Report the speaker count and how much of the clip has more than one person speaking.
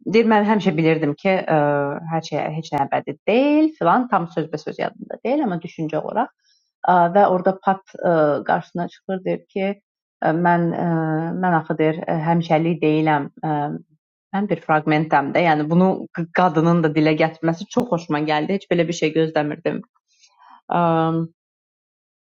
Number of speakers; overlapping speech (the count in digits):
1, no overlap